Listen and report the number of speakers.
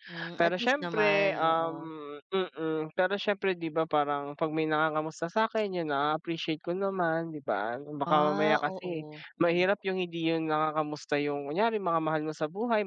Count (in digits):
2